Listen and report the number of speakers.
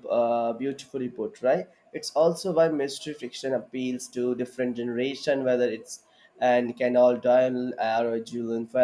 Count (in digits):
1